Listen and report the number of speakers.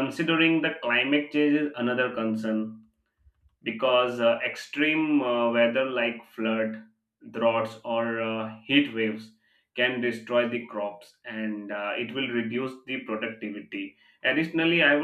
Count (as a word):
one